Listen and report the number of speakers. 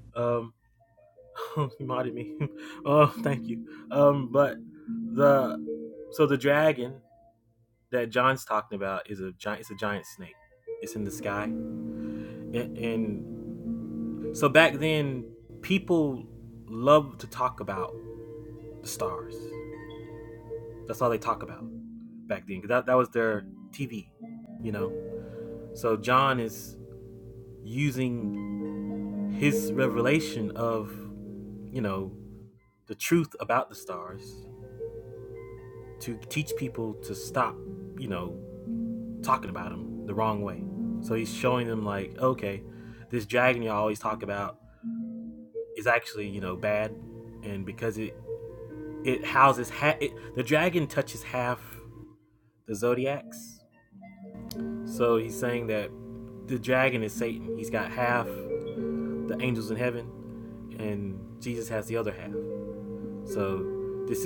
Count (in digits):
1